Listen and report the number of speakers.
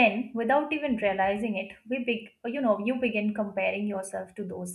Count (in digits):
1